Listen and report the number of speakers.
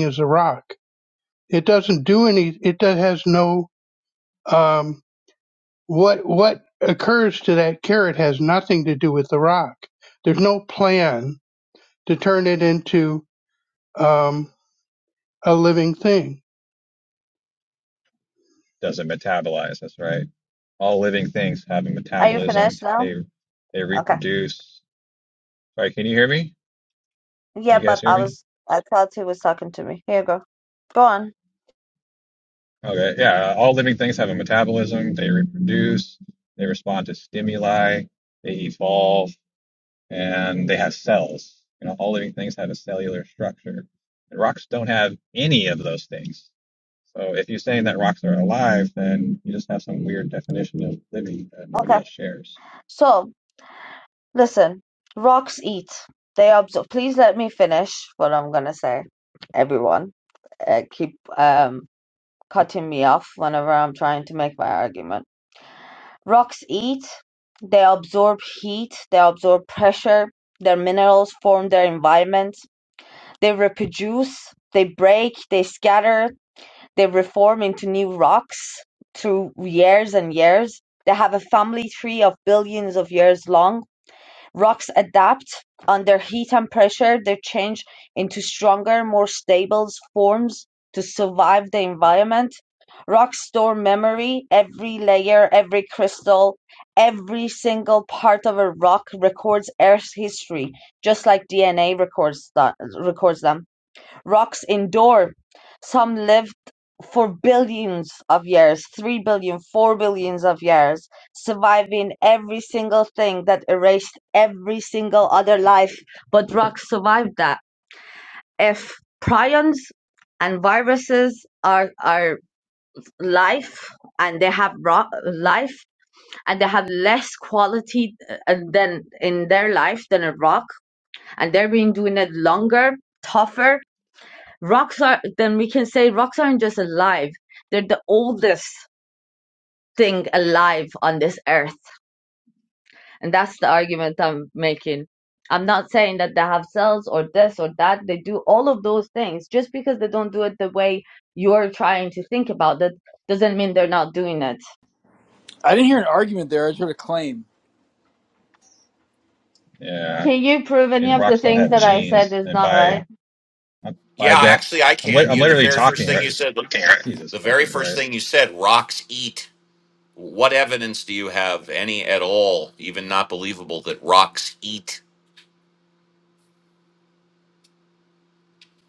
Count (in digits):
5